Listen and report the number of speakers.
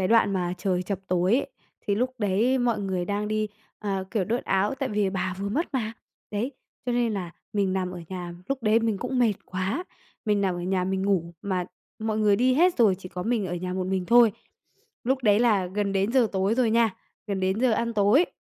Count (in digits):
1